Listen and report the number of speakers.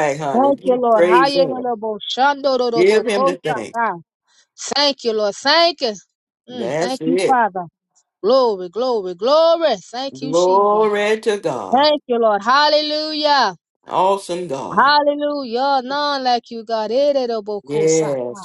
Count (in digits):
2